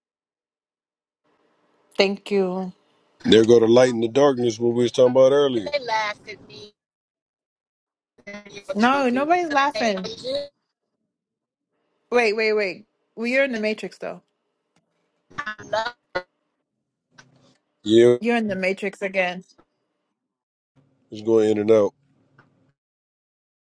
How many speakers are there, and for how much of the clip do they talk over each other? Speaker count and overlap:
3, about 6%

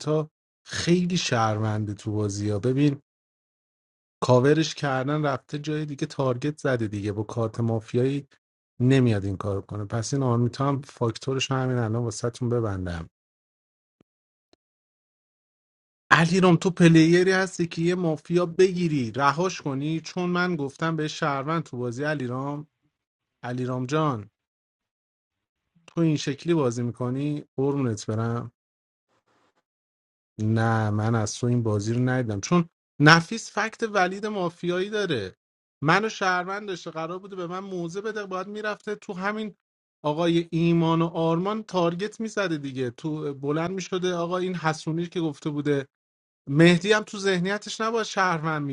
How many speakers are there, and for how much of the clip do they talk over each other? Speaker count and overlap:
1, no overlap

